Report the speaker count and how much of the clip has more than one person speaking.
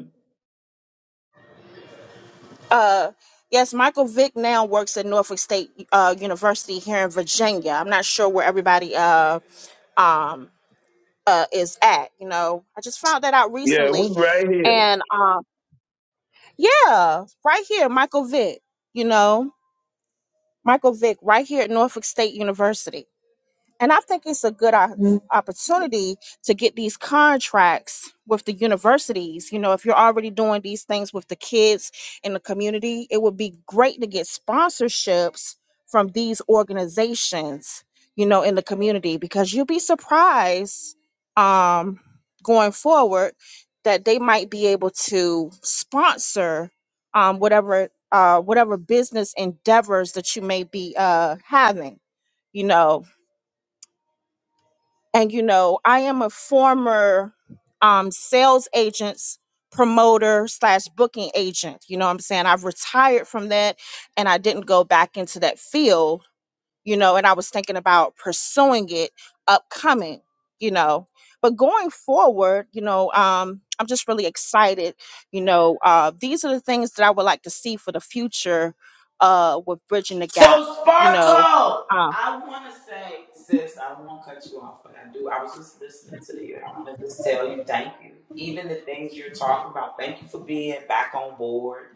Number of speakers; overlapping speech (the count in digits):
3, about 2%